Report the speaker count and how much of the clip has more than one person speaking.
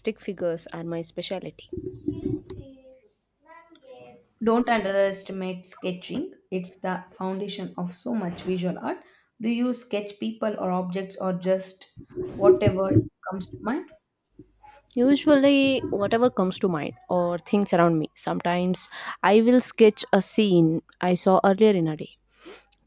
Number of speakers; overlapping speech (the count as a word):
two, no overlap